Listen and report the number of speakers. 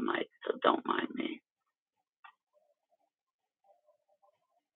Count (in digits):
1